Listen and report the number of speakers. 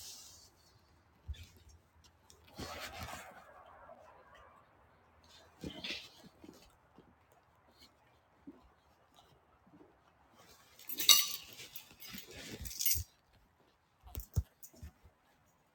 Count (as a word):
zero